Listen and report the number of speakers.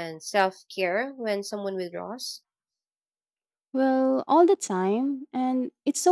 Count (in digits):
2